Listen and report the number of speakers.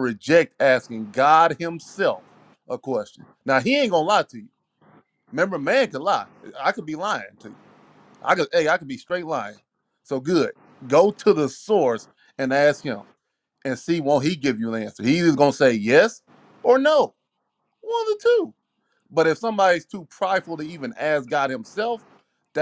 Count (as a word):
one